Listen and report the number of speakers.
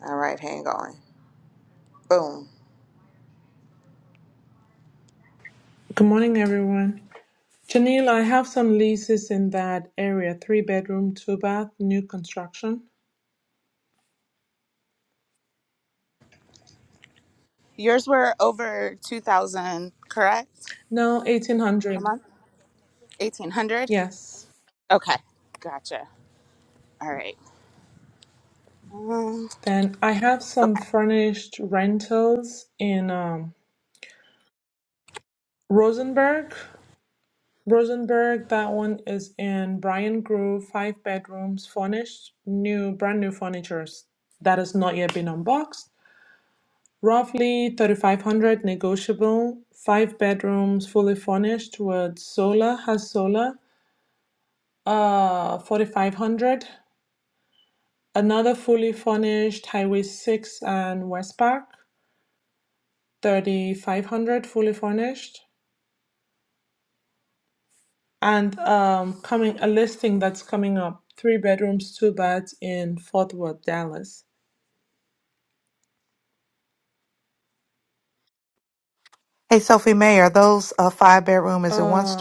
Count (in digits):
4